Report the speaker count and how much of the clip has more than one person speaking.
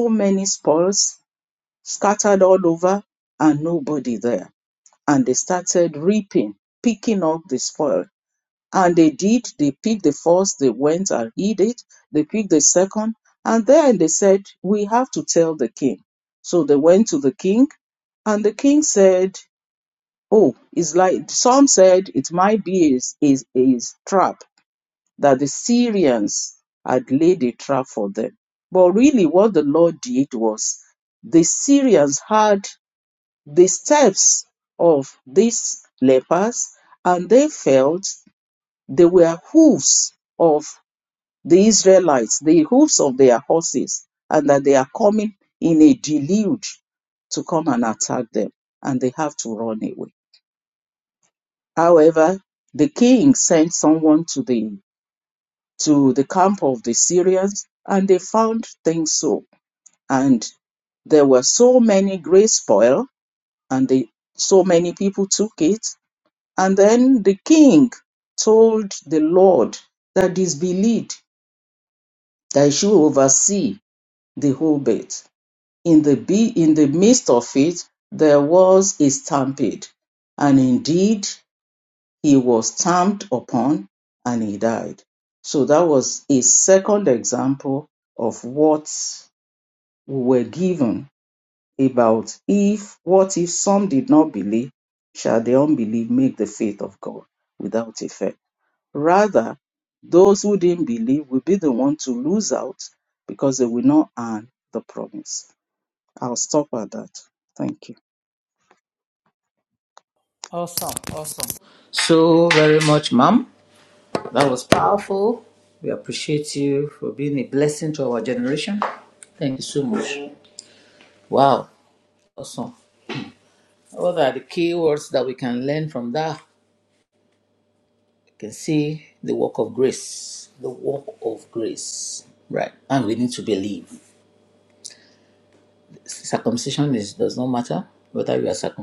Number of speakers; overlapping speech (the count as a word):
two, no overlap